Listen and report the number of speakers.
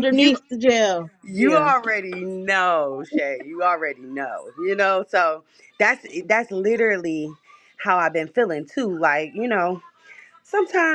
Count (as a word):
two